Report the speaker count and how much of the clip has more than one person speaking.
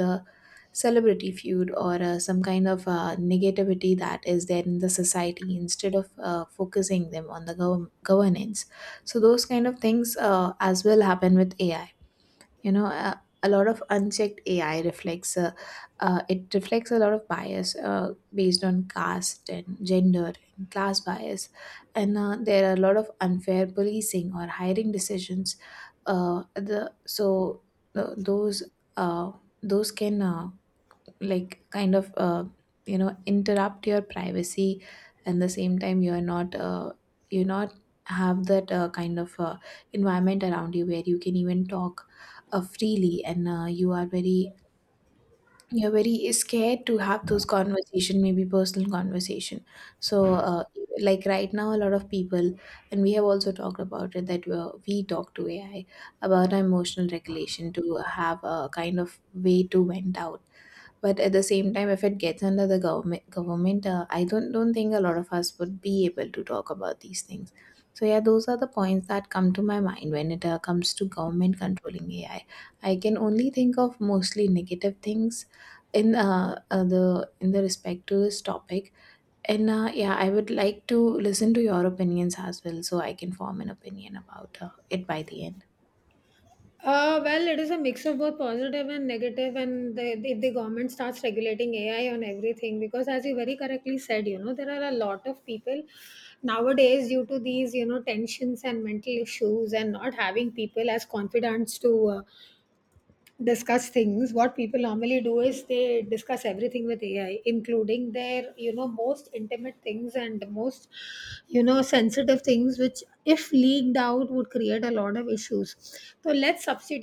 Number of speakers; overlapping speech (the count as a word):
two, no overlap